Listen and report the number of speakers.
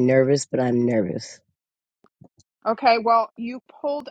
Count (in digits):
2